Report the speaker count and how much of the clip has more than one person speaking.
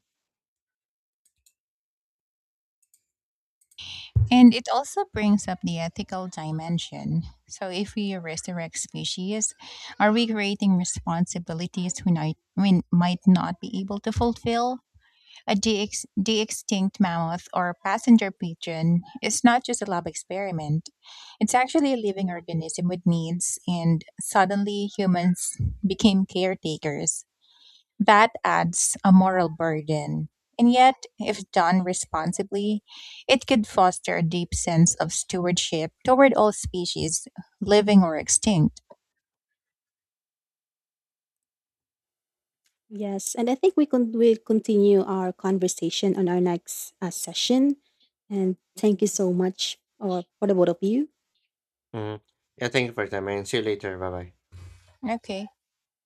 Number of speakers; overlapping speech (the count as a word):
three, no overlap